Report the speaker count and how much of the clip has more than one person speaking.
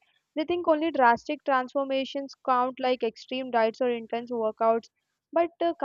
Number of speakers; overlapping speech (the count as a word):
one, no overlap